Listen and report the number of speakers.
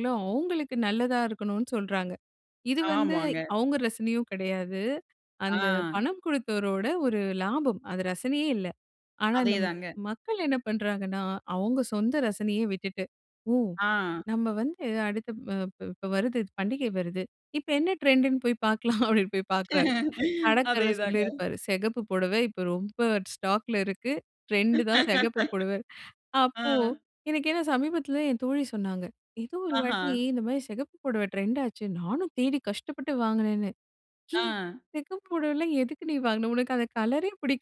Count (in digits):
2